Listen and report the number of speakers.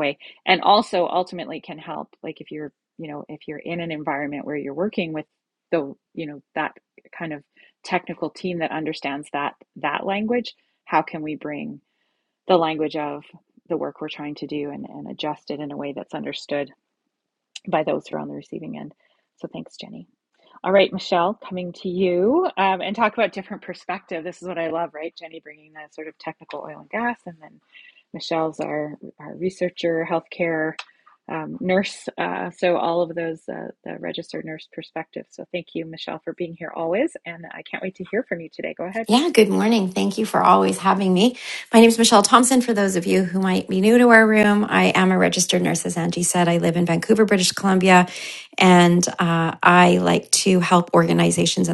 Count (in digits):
2